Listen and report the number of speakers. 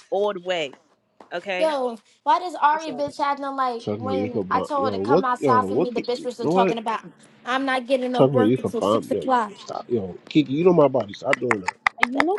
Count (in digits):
3